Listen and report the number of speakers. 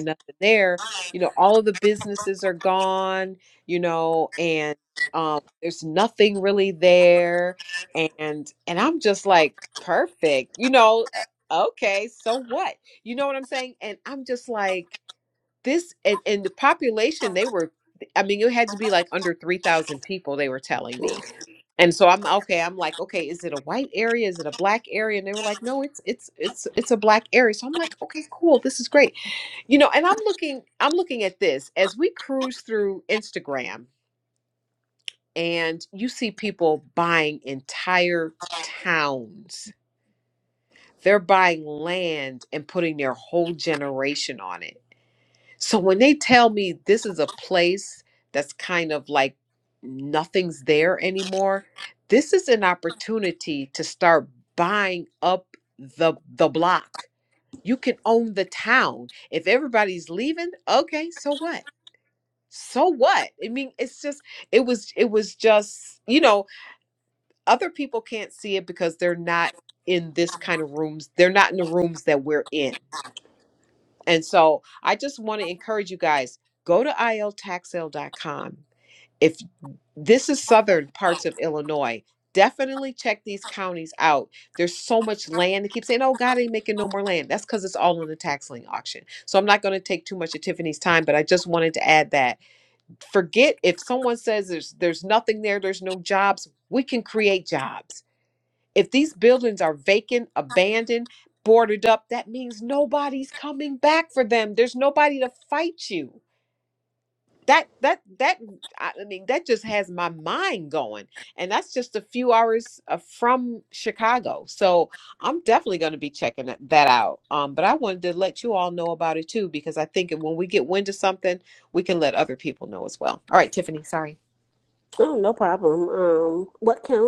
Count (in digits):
2